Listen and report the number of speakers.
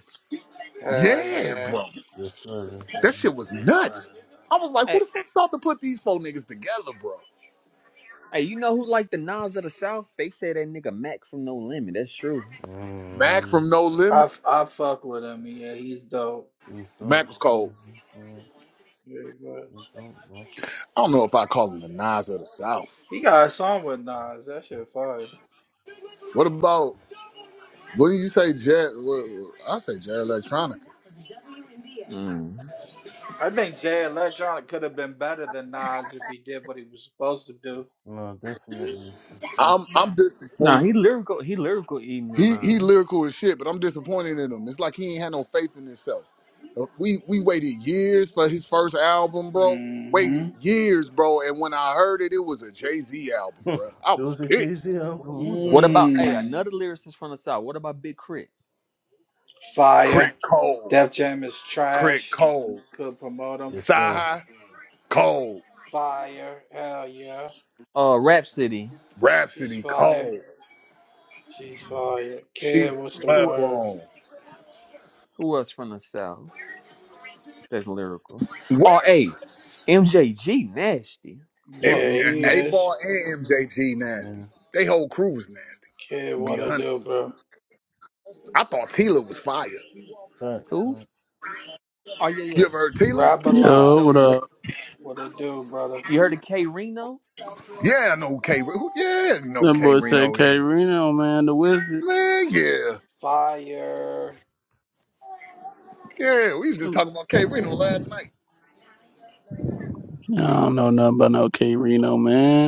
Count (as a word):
five